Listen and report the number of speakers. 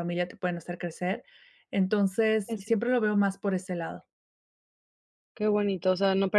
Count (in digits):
2